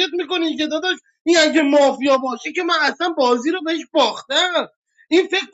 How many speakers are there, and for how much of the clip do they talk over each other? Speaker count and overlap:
1, no overlap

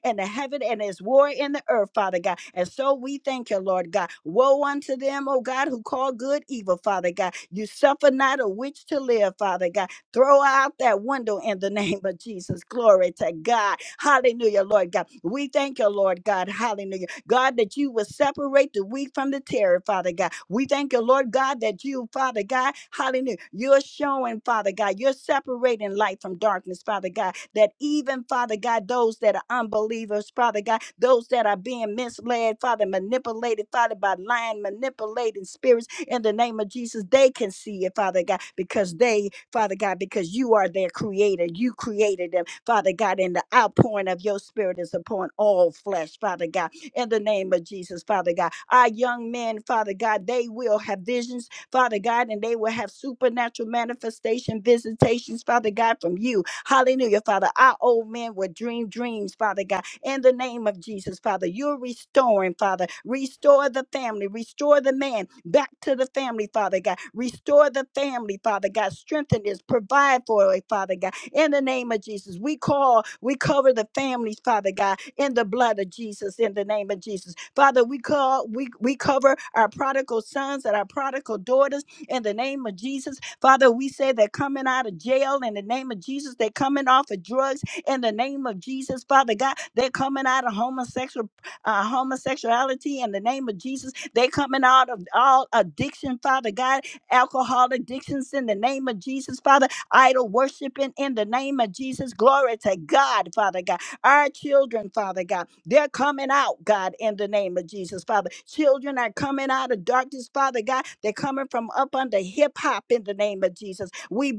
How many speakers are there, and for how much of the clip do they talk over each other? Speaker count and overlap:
1, no overlap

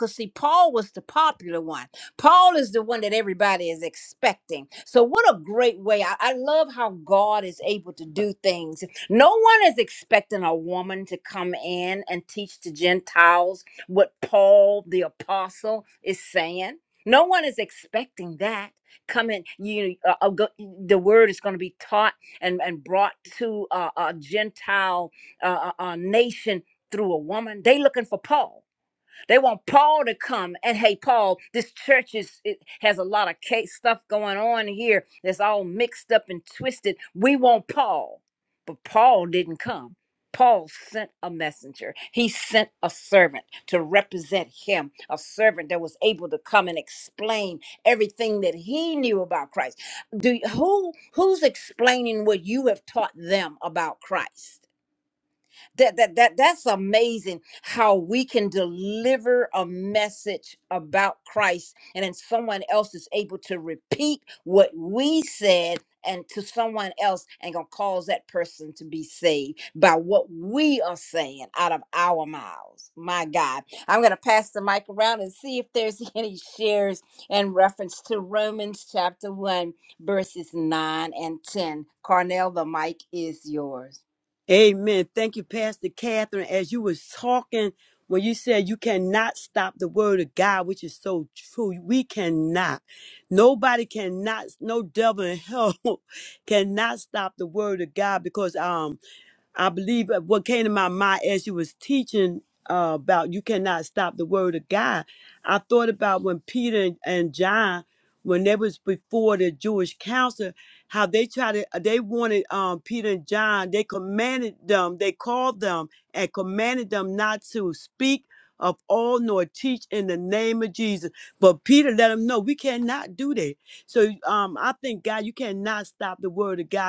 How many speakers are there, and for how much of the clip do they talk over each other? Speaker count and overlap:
2, no overlap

